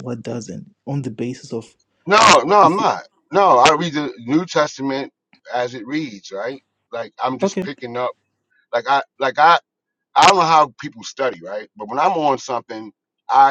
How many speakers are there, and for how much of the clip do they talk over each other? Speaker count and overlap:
two, about 2%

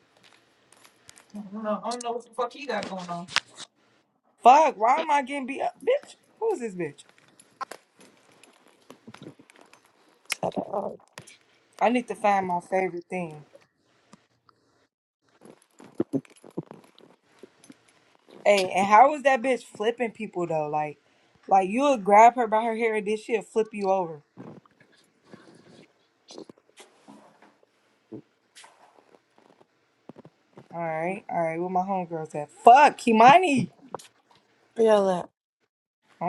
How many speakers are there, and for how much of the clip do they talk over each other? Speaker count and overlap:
three, no overlap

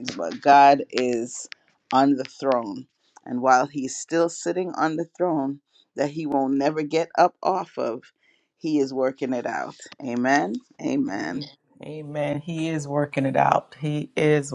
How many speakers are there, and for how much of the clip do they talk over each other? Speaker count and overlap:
two, about 3%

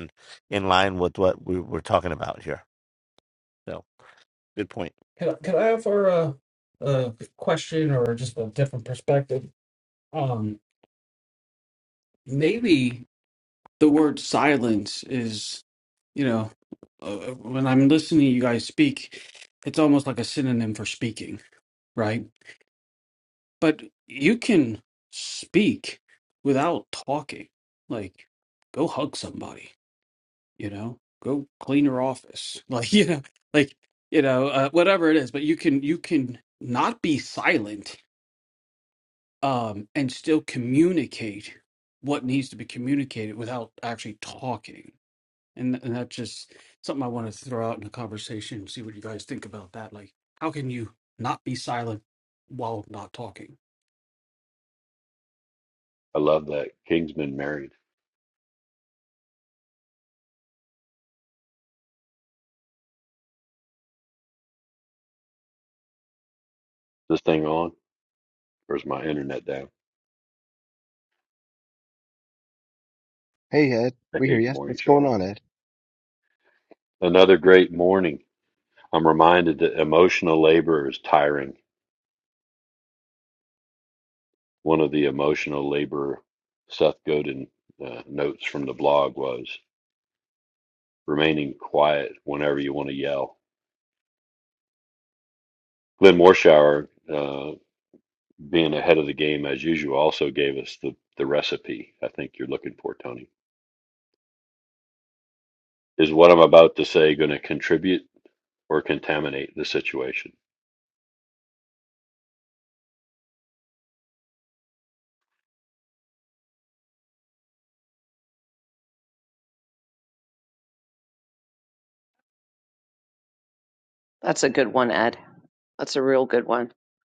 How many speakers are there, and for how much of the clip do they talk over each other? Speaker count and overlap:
five, about 1%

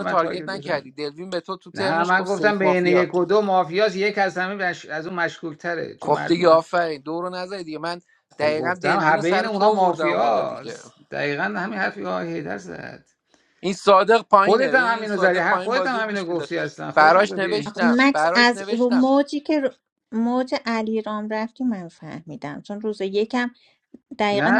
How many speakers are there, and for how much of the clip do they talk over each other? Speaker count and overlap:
three, about 38%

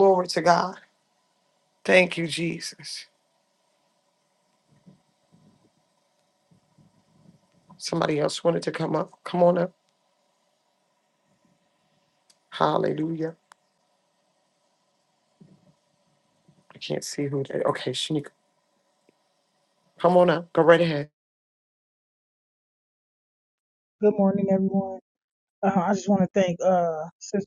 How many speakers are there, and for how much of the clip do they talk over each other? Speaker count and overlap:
two, no overlap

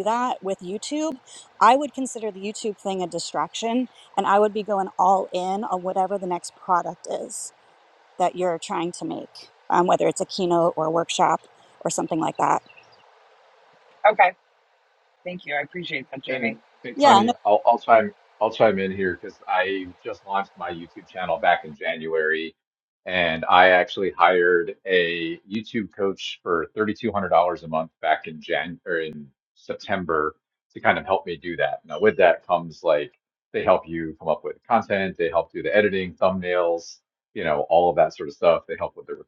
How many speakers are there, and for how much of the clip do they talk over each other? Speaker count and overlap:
three, about 1%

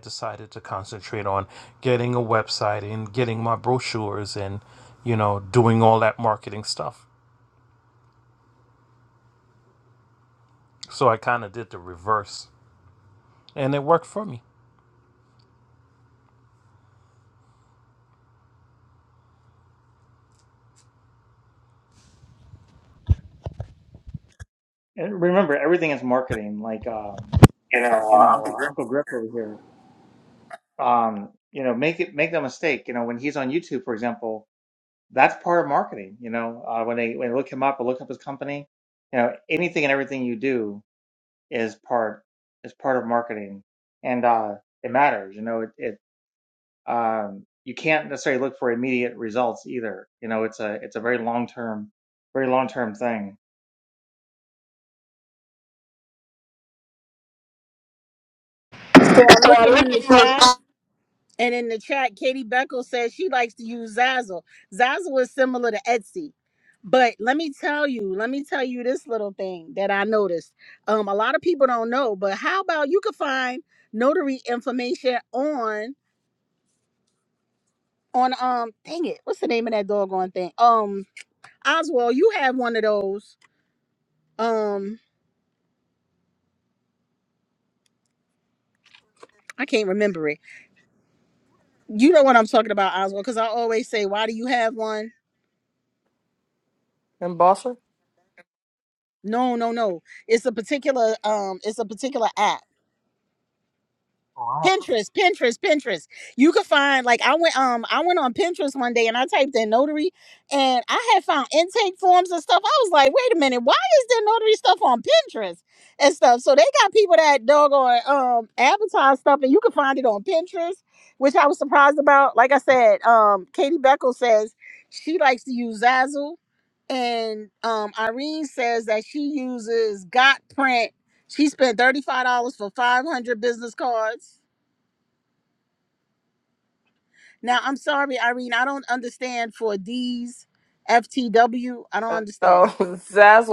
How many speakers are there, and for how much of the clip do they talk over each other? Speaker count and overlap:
four, about 1%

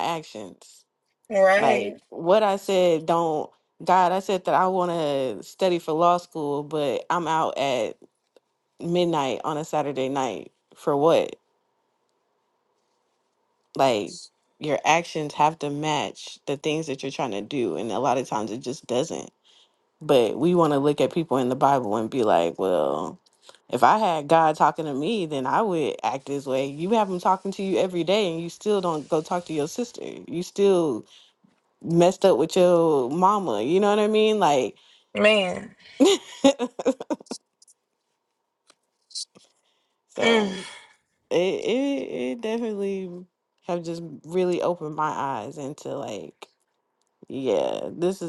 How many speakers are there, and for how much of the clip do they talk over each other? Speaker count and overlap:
two, about 2%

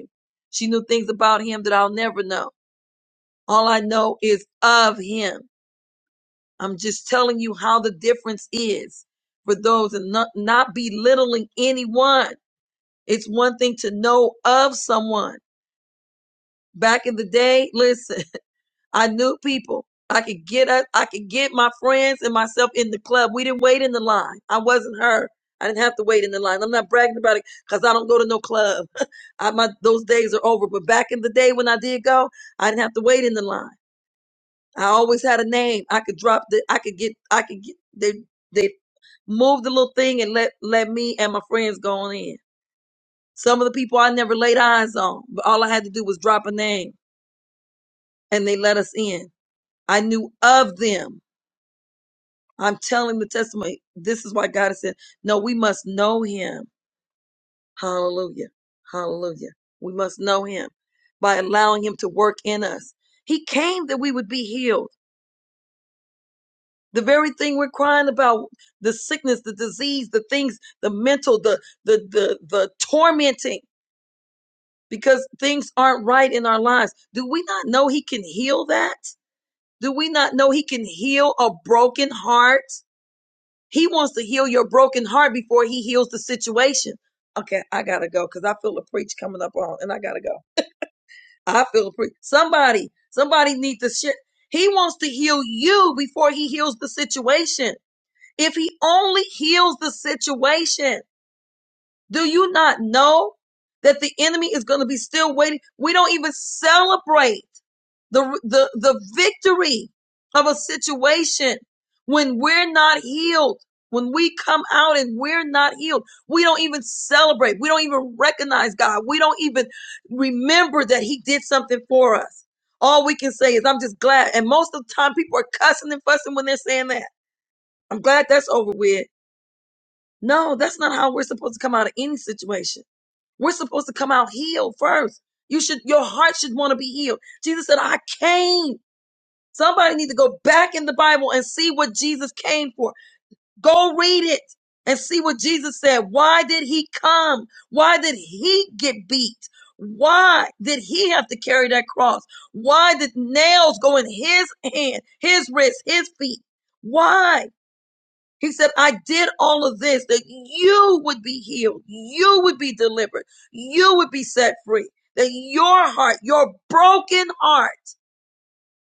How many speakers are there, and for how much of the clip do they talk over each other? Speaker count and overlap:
one, no overlap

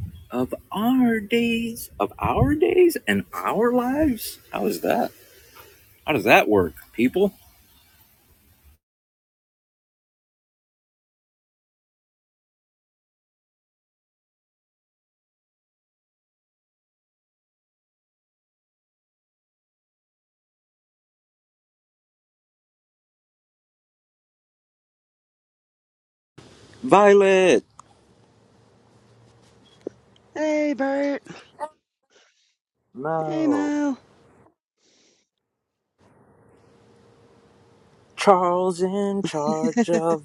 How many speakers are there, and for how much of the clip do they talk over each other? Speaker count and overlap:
two, about 1%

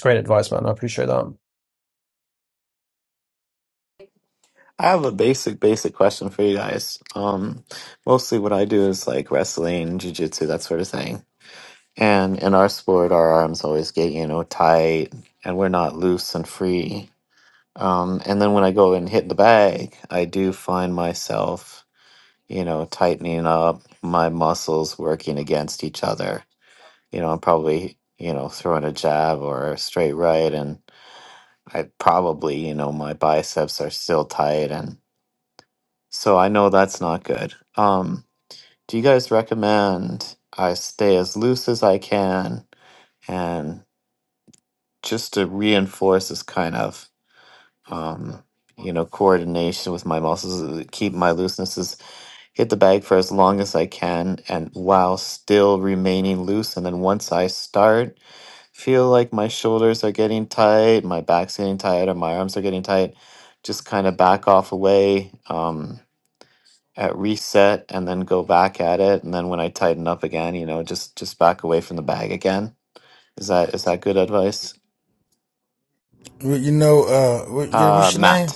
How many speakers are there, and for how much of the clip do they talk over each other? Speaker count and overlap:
three, about 1%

